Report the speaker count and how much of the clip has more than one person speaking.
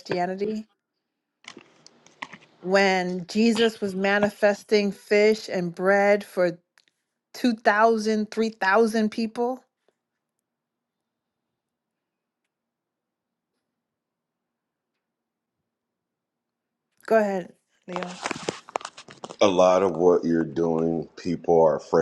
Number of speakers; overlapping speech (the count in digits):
2, no overlap